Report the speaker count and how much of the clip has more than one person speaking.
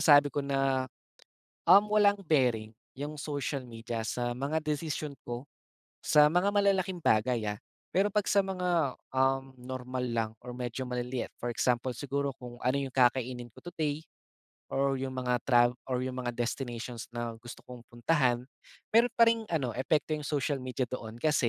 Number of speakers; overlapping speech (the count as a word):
one, no overlap